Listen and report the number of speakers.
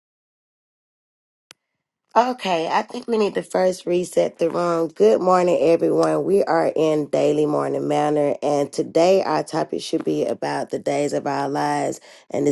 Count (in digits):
1